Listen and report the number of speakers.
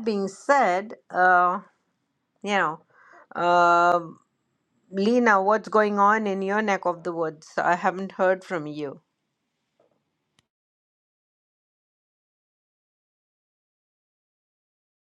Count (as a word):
one